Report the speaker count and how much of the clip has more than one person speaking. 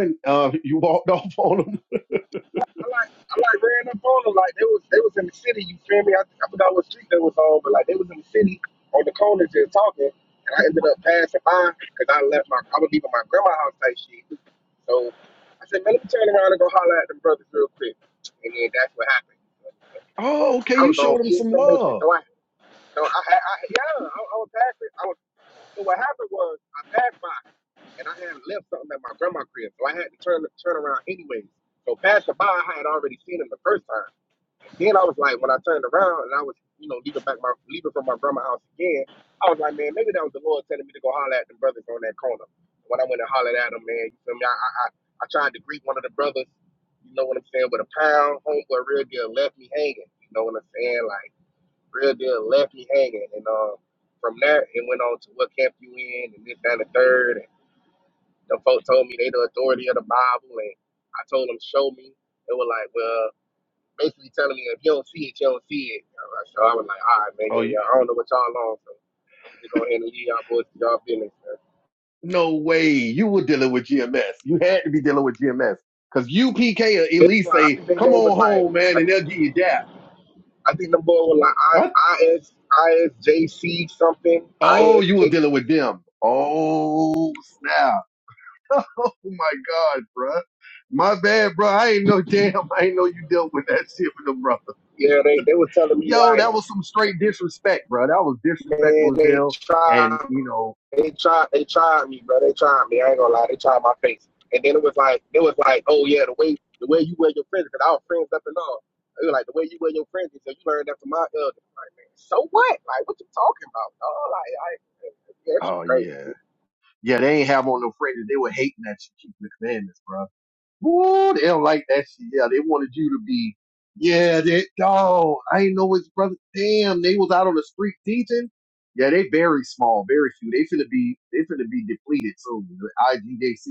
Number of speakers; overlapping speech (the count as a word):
two, about 5%